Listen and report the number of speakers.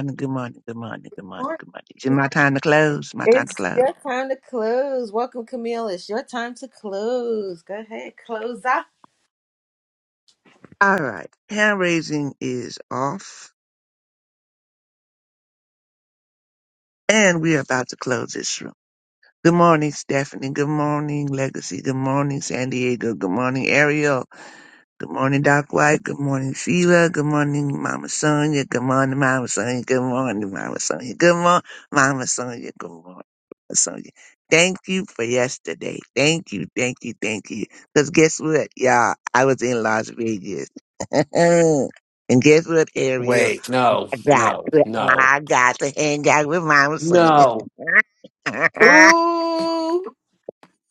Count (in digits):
3